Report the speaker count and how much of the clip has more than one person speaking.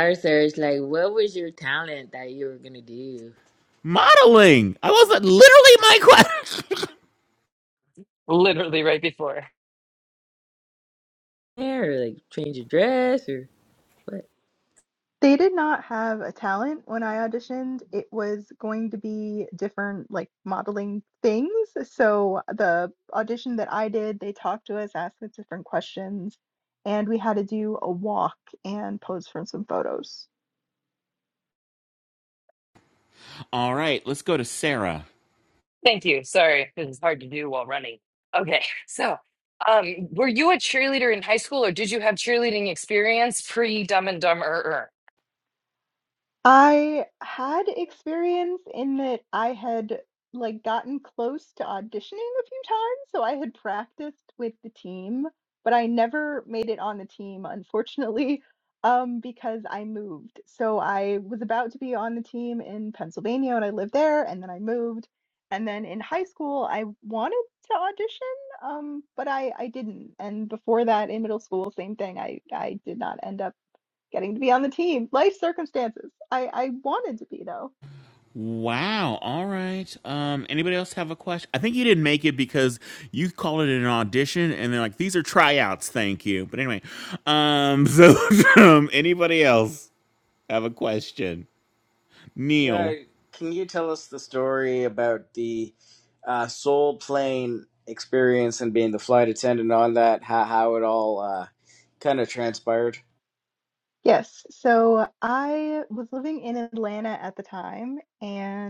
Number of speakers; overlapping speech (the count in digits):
5, under 1%